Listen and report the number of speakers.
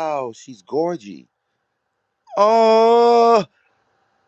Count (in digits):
1